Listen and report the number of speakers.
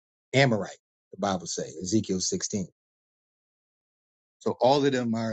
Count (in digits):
1